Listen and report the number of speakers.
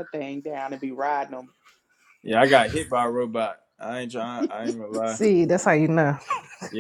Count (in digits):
3